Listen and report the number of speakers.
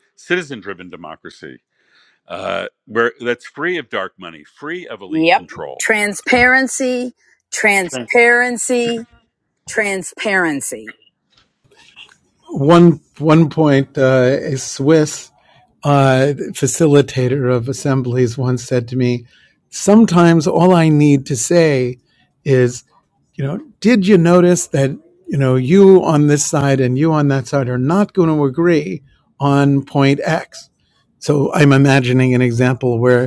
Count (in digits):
3